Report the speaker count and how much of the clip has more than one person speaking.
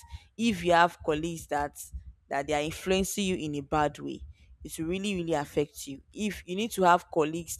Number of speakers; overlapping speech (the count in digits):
1, no overlap